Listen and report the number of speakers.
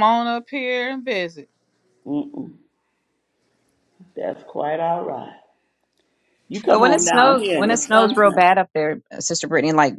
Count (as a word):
three